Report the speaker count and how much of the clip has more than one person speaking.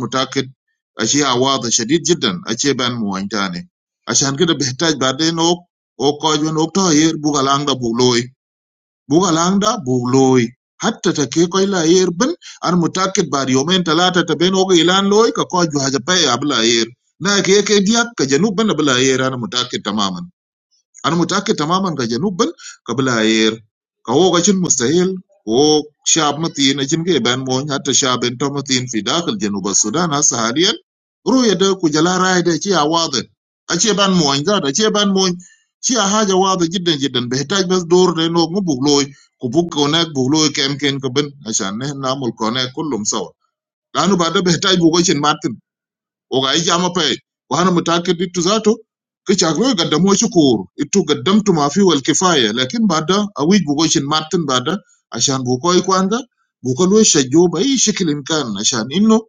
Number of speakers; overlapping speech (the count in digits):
1, no overlap